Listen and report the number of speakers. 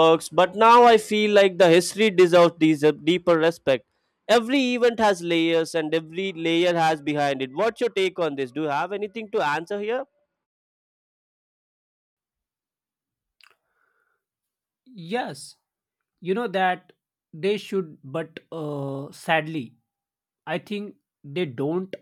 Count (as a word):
two